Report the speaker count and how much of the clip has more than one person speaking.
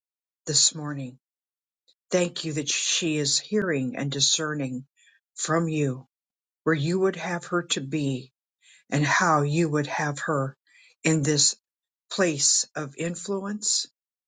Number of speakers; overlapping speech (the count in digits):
1, no overlap